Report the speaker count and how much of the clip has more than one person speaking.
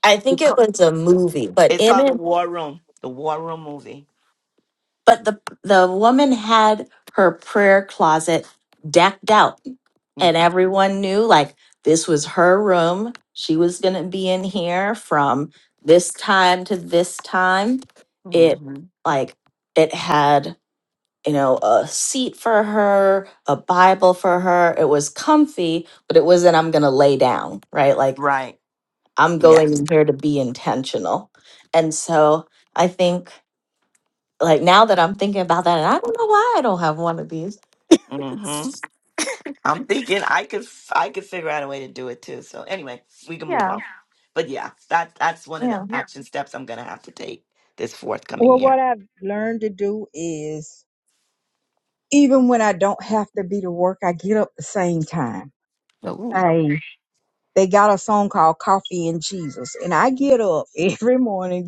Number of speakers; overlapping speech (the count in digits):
3, about 4%